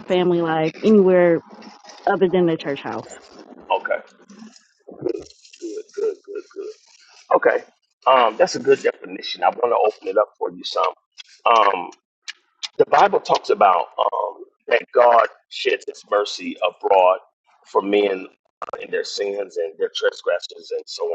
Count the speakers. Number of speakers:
2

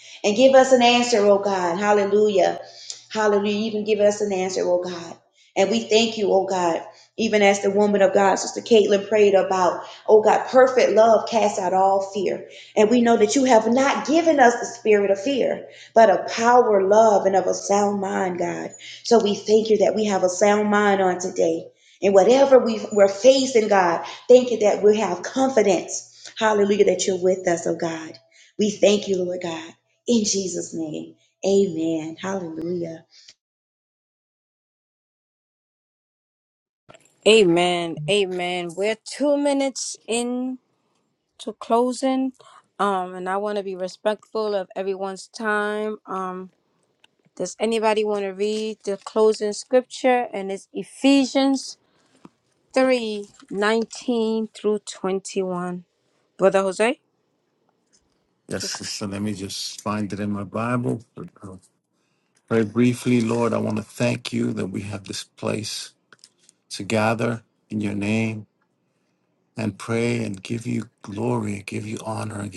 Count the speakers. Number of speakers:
3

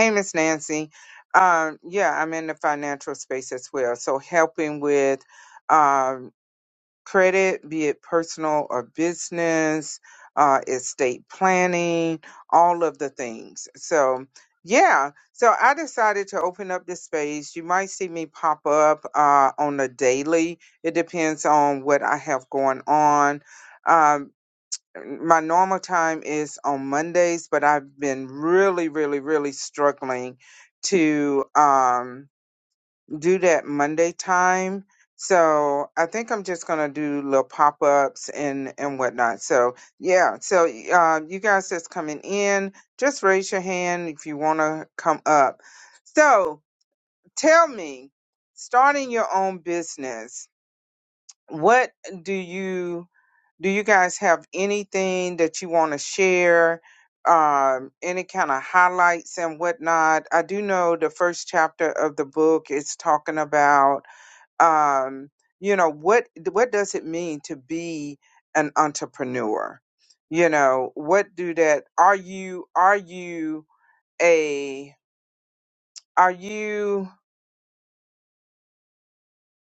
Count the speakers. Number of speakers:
1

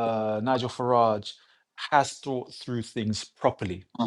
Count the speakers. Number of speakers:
1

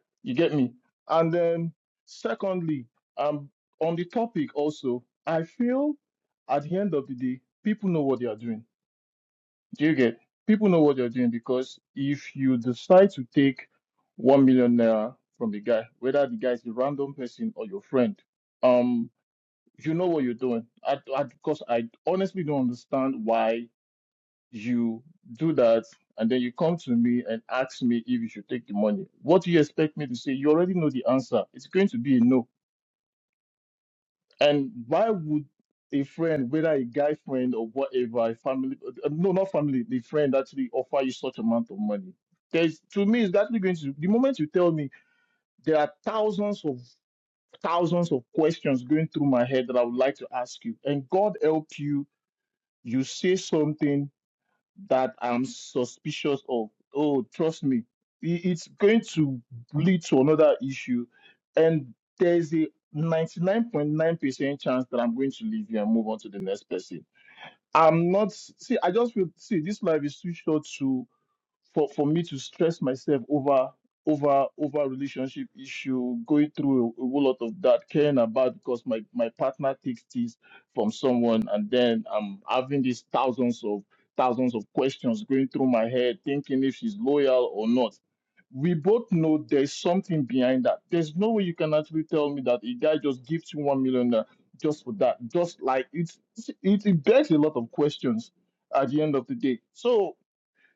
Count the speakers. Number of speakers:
1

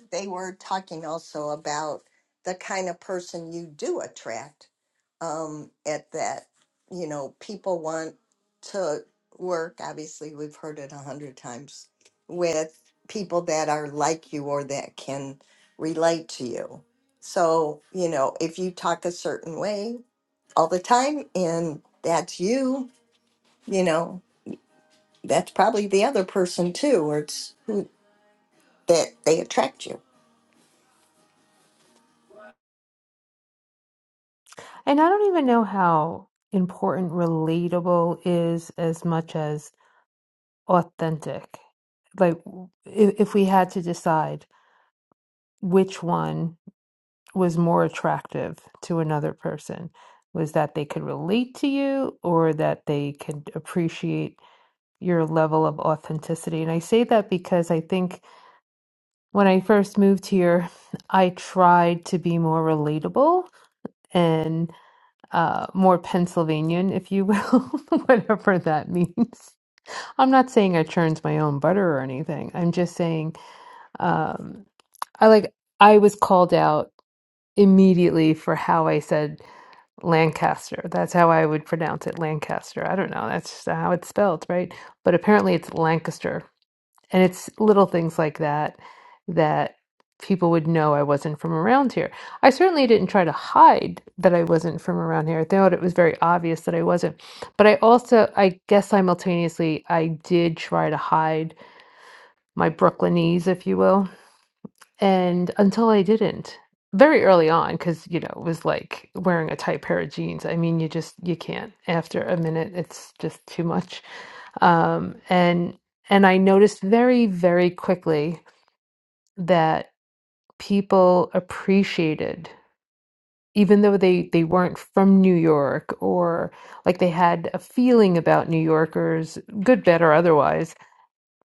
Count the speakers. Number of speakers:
2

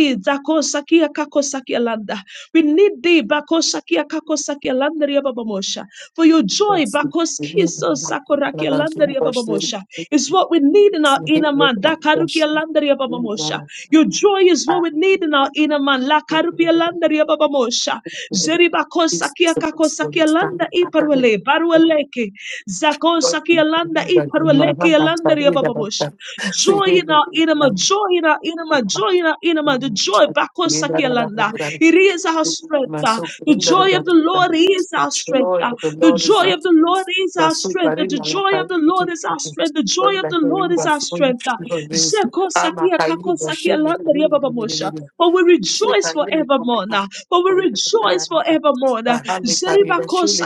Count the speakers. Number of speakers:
2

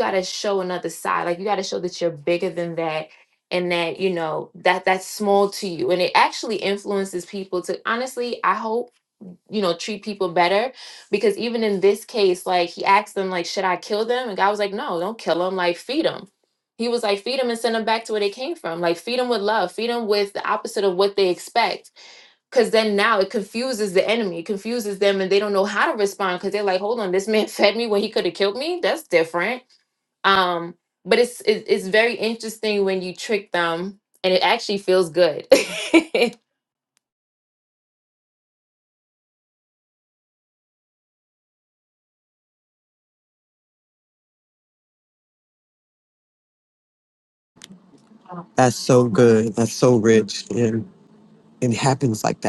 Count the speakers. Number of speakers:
2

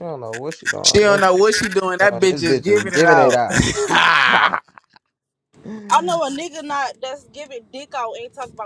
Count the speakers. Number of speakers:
3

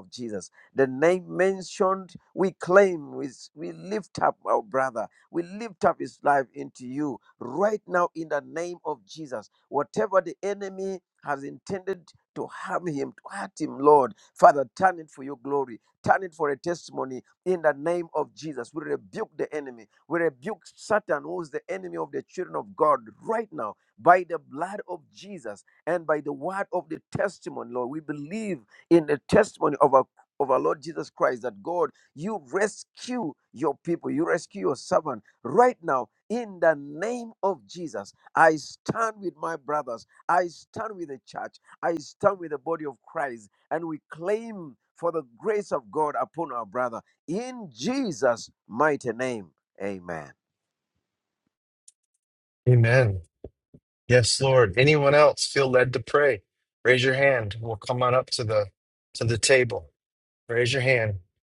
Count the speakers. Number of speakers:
2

